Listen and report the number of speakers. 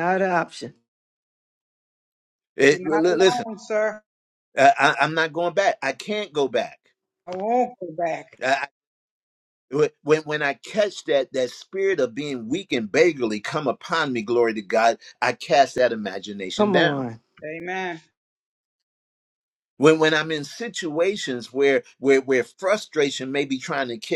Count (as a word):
three